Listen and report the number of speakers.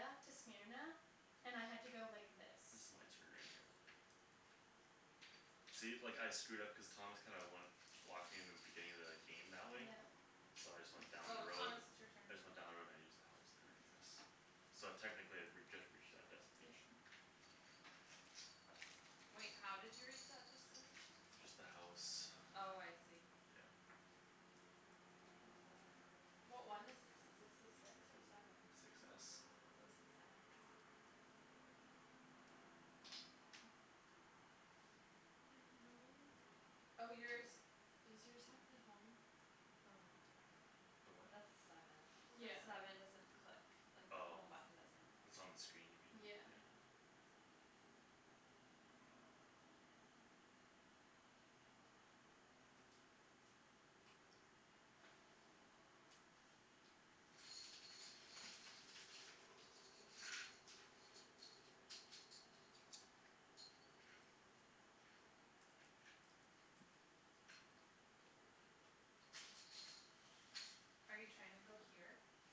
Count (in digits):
3